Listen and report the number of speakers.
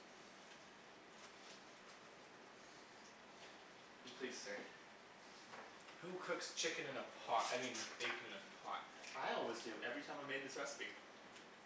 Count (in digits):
2